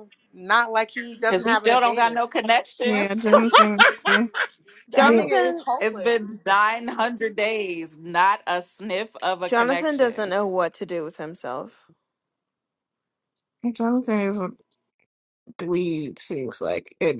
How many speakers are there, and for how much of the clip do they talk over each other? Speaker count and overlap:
4, about 18%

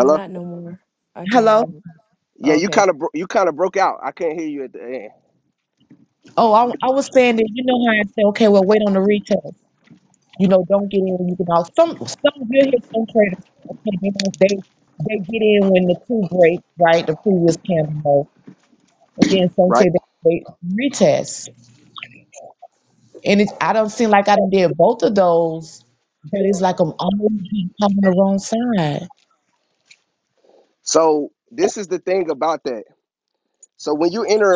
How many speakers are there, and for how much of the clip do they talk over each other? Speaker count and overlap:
3, about 4%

